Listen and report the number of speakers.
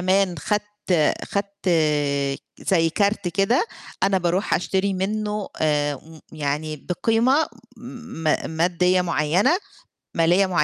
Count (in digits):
1